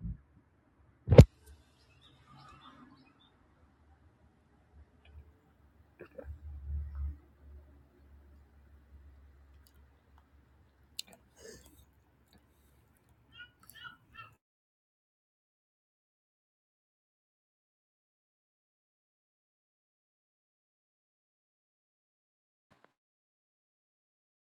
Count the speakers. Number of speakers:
0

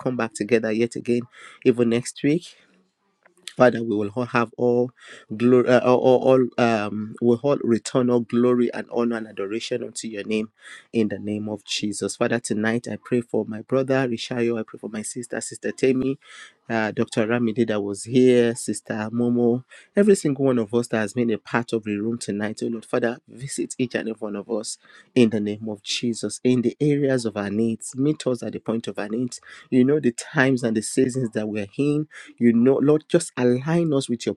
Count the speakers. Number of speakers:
1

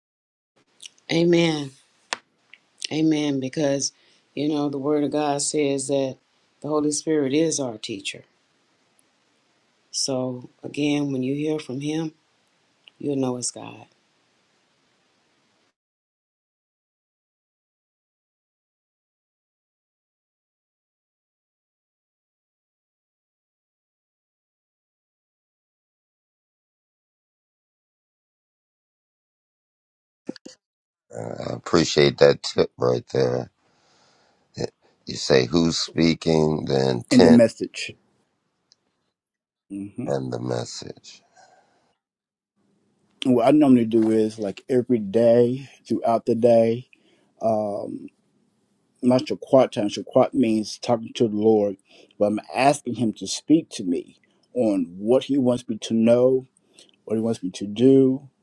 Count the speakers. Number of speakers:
3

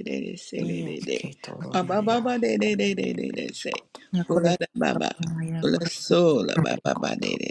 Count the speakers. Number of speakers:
3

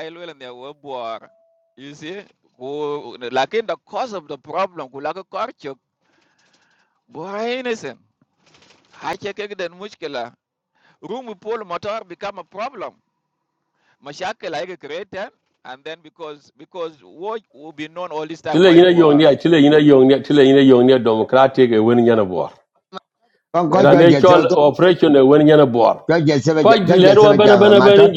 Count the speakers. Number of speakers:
3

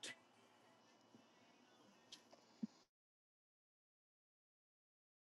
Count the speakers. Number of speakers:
0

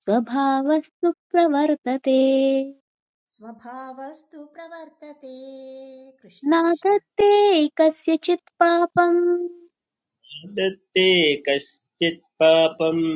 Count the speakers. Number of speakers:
3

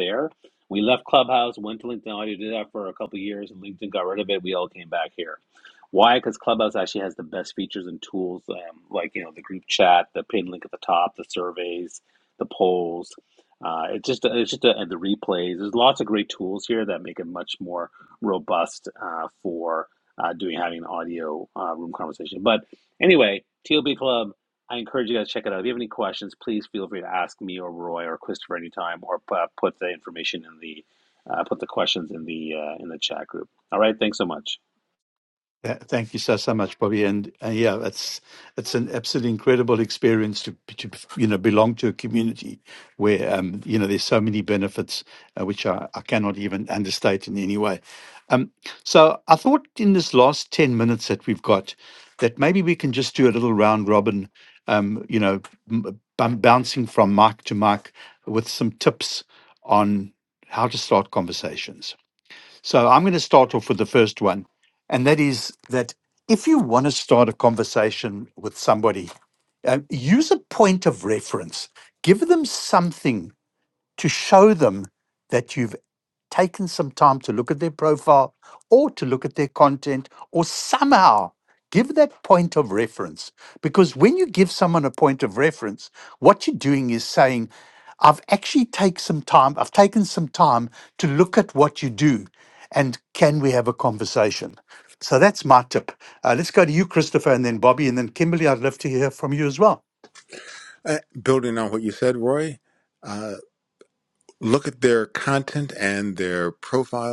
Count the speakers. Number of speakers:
3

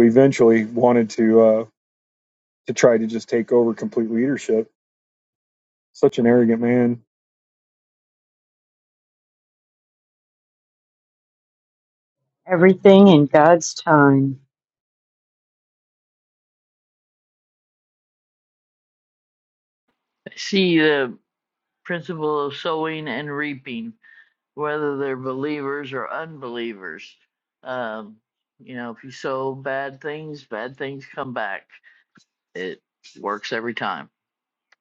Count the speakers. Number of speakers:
3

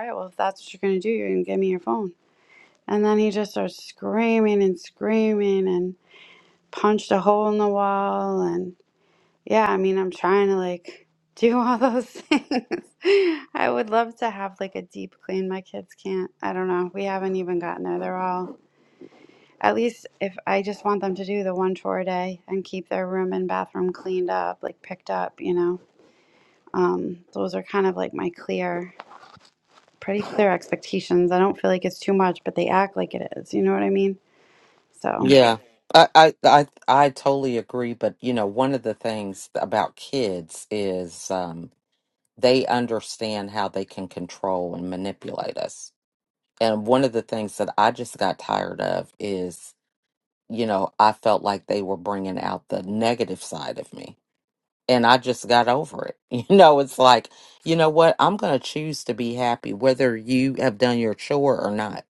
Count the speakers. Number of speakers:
2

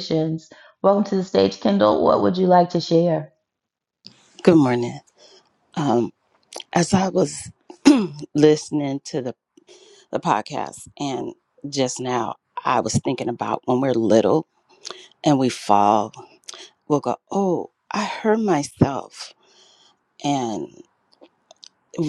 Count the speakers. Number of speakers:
2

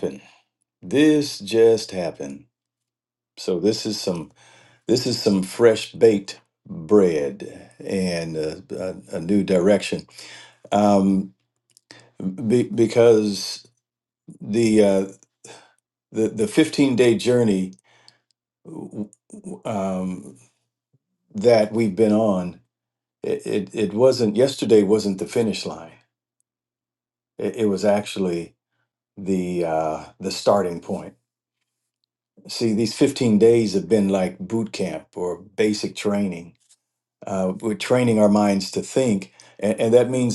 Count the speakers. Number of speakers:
1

